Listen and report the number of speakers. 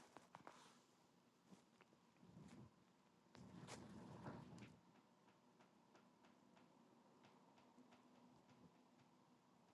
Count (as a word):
zero